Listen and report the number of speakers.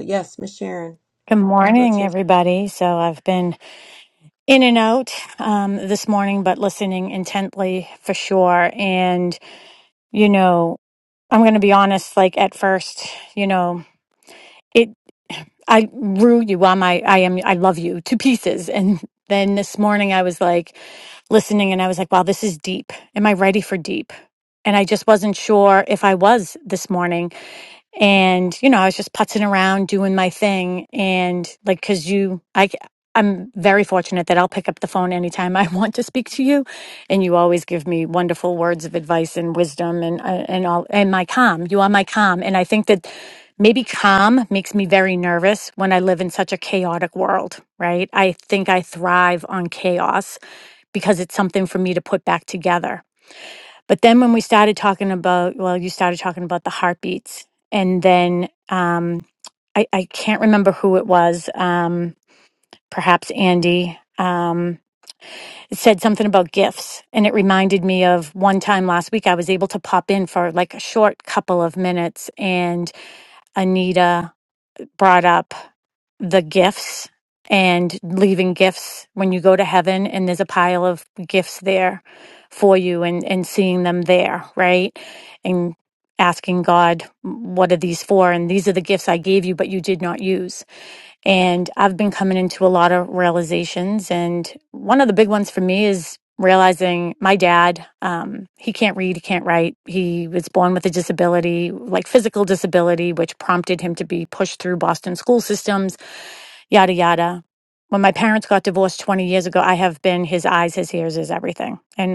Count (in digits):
2